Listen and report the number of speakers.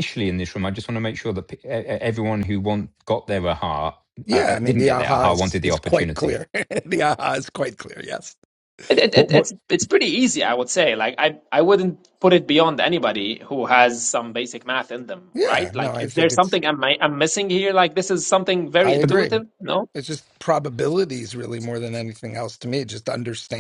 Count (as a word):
three